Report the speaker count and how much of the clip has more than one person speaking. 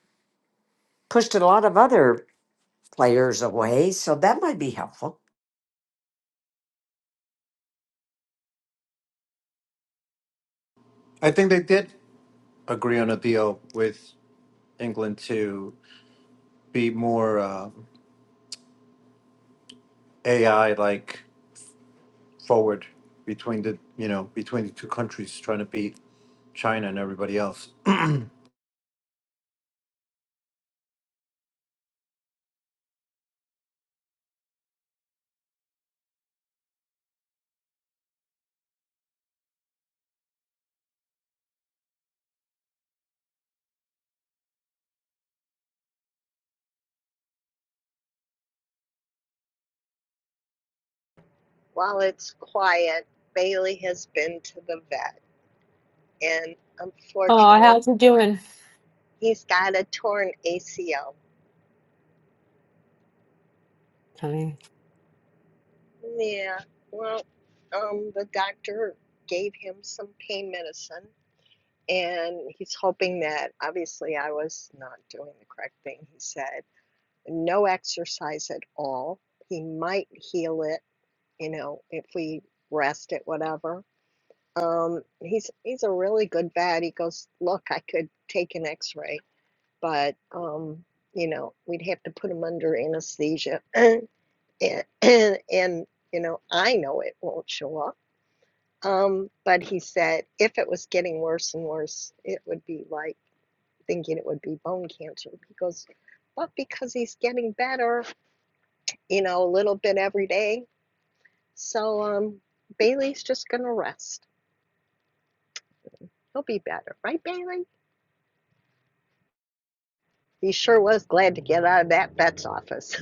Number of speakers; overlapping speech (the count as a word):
four, under 1%